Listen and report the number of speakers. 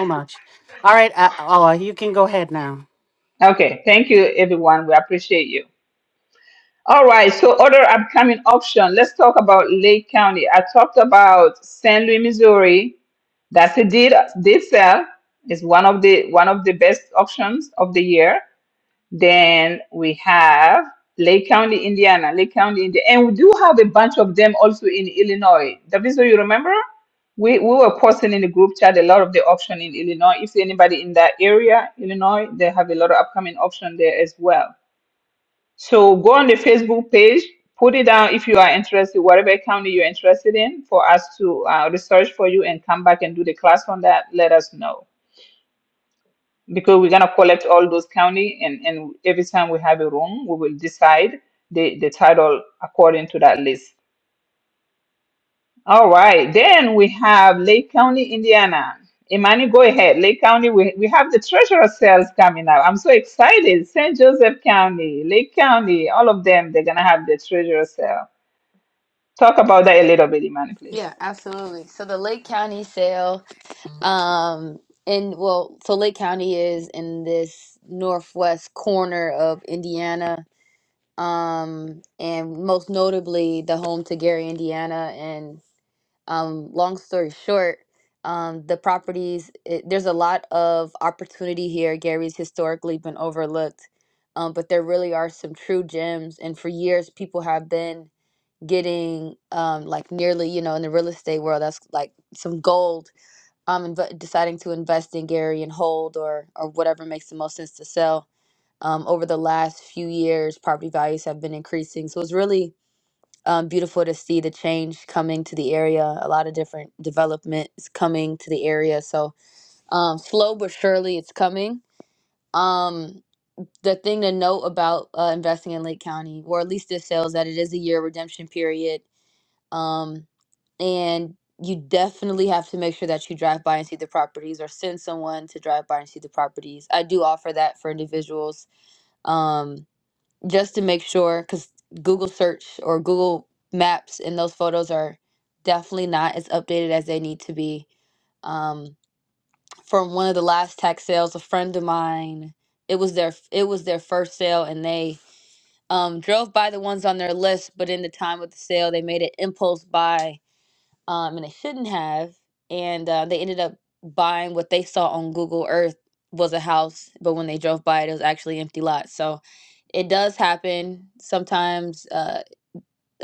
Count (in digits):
3